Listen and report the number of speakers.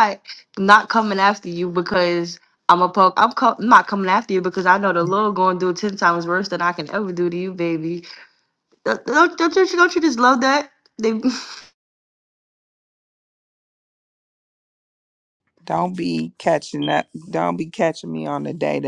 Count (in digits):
2